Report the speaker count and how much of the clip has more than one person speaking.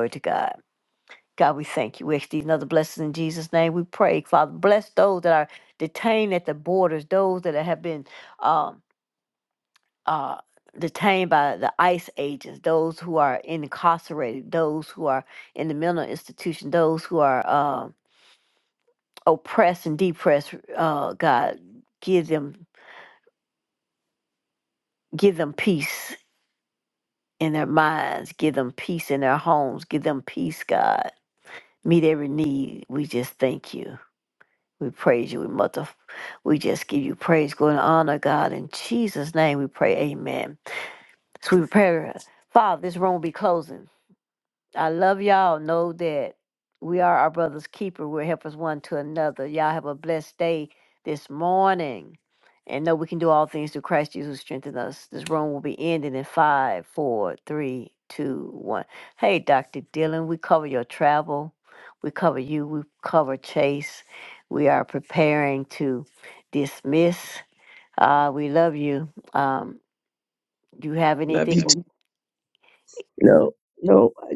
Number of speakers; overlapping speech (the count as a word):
two, about 1%